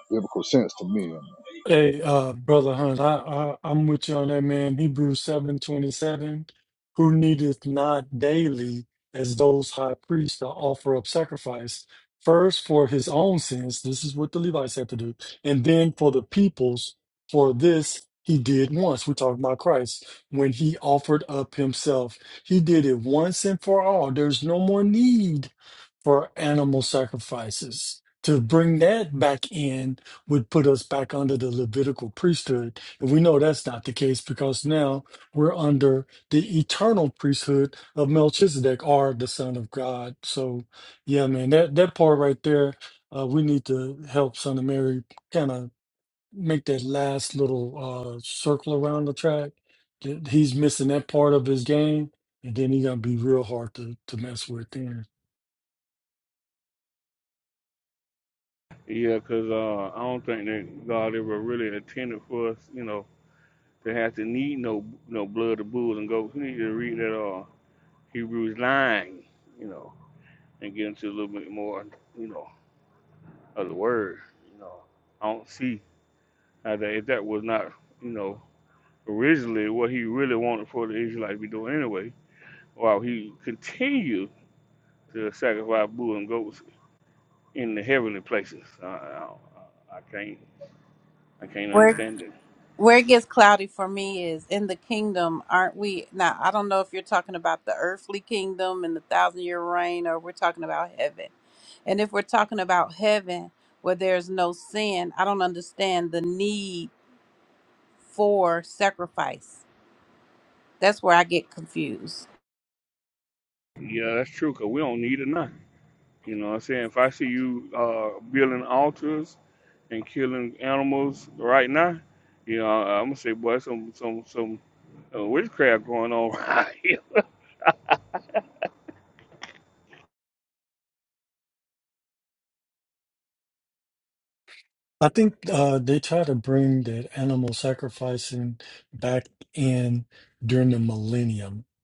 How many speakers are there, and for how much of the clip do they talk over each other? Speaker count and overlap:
4, no overlap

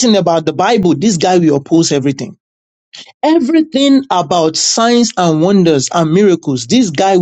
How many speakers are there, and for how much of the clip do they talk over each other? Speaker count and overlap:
1, no overlap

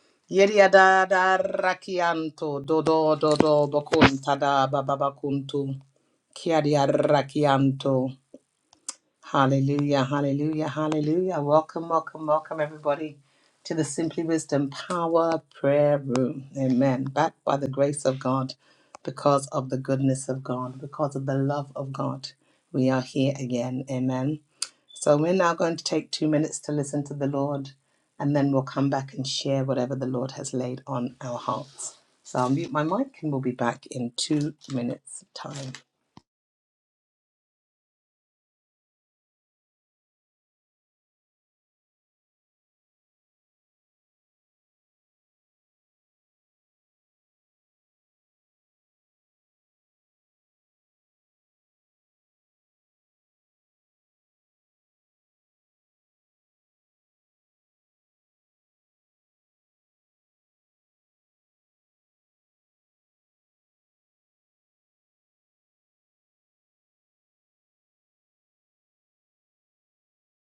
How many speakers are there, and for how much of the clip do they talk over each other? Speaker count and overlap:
1, no overlap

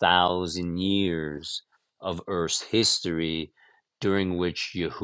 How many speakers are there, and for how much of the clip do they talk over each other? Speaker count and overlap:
1, no overlap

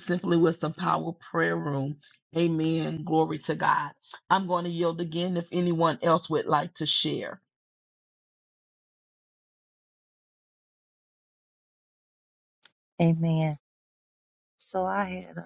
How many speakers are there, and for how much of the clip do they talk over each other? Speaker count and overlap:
2, no overlap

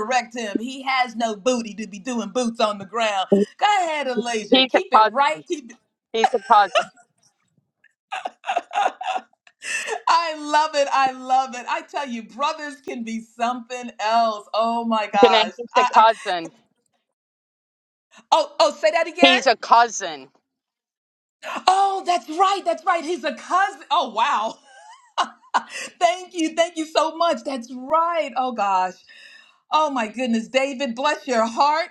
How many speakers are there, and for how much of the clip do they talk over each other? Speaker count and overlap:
2, about 6%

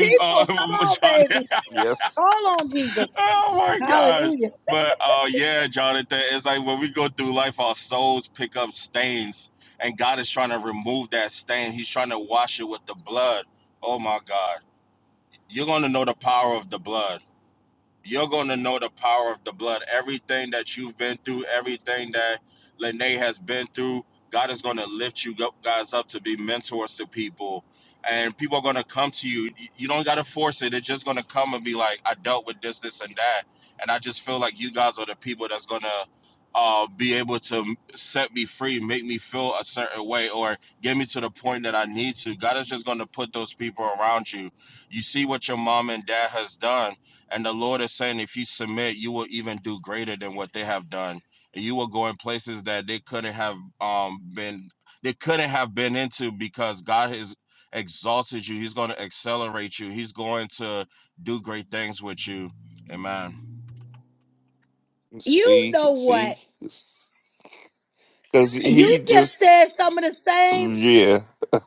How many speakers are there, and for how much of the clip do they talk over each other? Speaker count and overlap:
3, about 4%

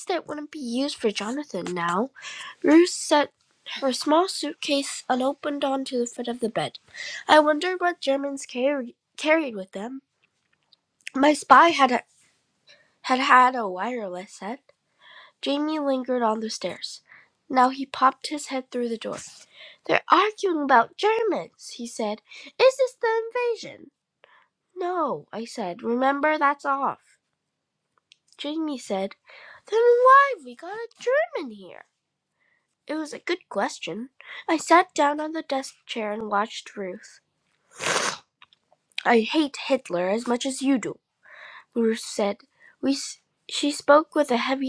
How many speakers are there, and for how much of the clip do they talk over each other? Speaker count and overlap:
1, no overlap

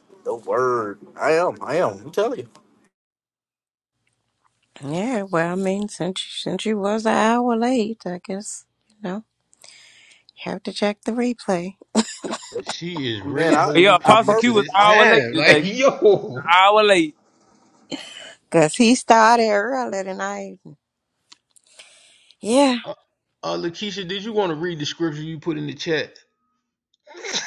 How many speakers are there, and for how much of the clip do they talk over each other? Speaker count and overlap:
4, about 9%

